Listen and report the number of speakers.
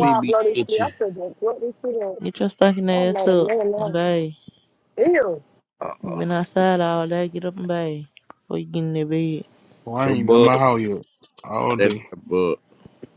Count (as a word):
four